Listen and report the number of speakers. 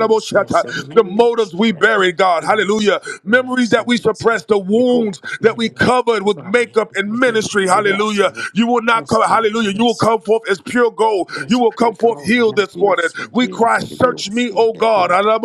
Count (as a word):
two